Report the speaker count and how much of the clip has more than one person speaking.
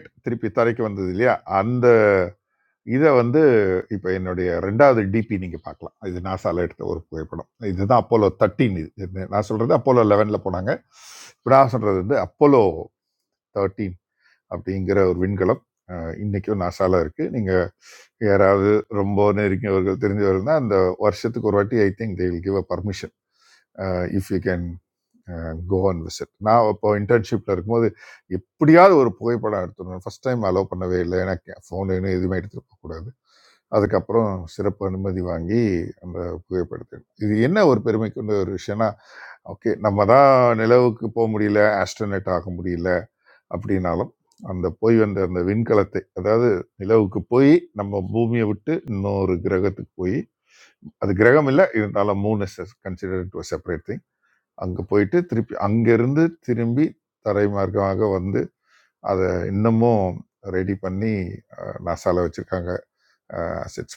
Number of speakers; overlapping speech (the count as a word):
one, no overlap